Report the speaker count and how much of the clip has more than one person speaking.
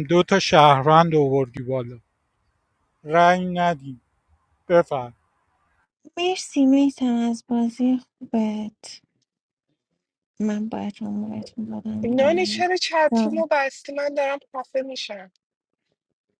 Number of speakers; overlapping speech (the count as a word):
three, about 6%